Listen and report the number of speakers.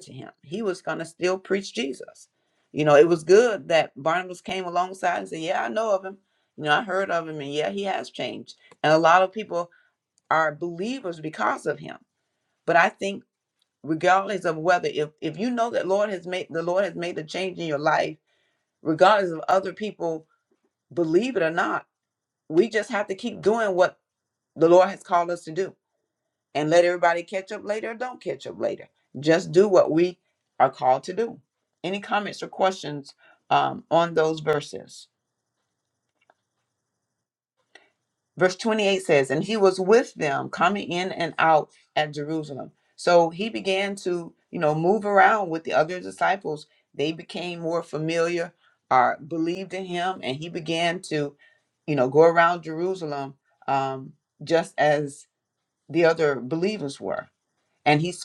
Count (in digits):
1